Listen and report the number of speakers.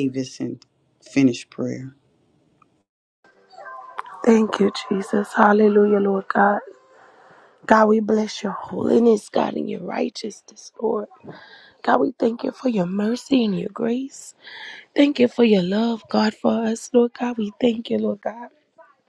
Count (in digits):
2